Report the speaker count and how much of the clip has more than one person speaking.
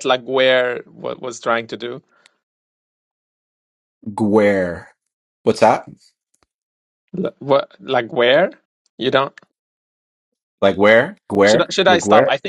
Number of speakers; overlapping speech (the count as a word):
two, about 7%